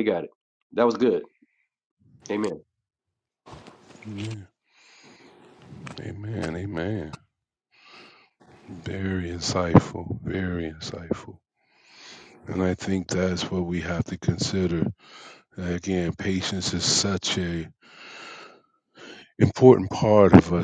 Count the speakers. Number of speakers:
2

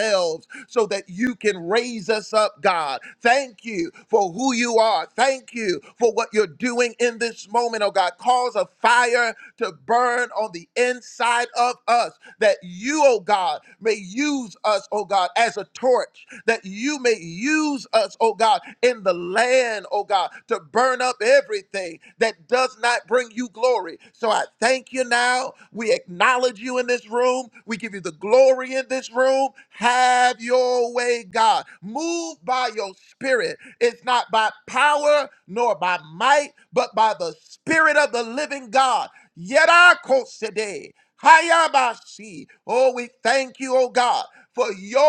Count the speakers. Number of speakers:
1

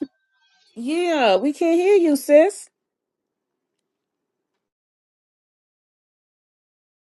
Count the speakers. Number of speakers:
1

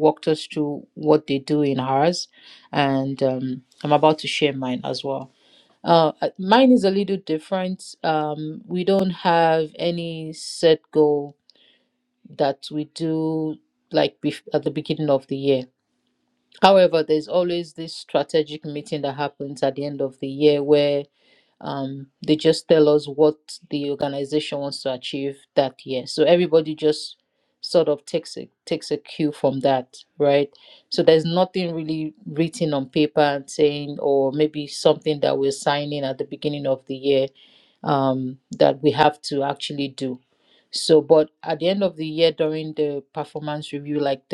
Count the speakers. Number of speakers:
1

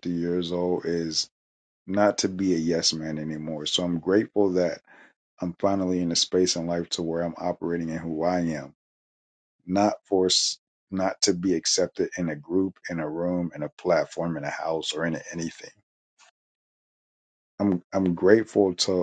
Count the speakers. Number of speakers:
1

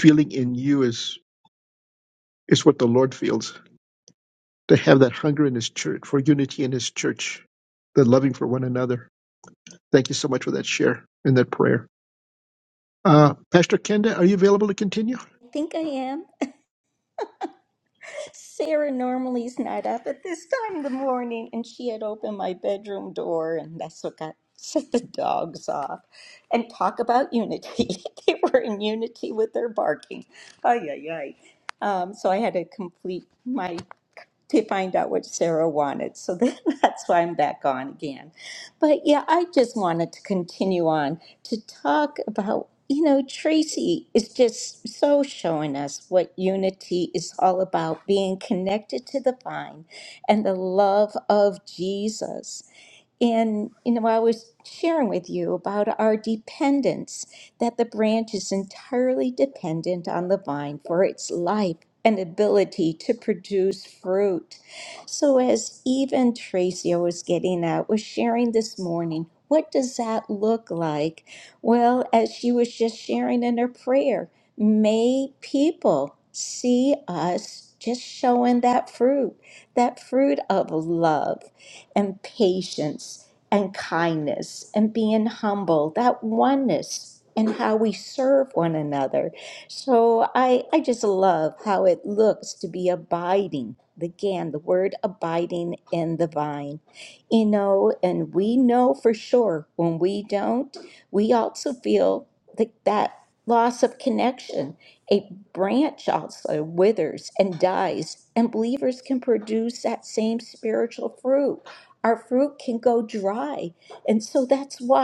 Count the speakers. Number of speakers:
2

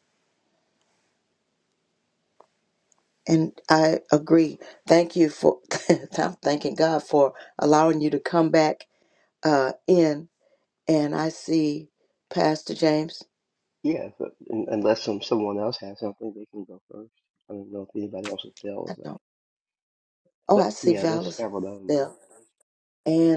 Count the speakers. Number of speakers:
2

